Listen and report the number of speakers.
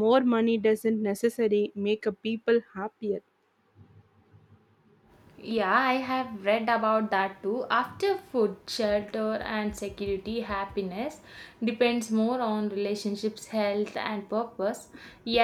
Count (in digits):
2